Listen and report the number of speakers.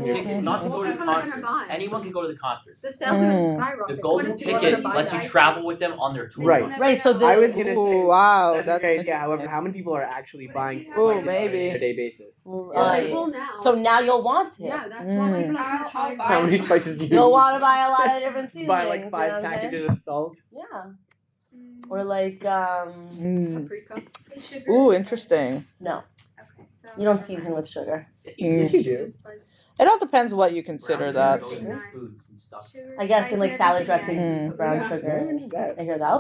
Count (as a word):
six